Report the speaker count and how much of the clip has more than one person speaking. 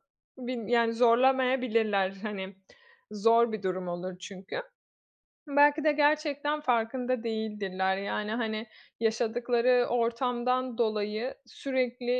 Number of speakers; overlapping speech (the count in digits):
1, no overlap